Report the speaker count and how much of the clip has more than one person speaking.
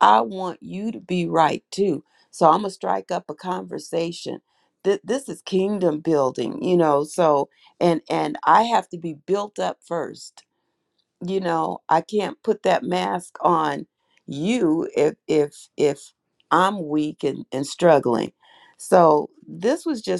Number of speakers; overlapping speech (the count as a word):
one, no overlap